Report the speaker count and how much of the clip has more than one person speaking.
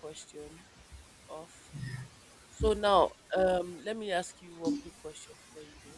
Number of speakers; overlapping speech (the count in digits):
1, no overlap